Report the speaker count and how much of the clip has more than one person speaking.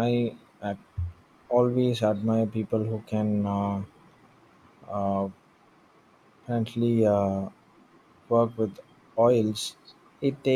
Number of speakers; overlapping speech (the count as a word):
one, no overlap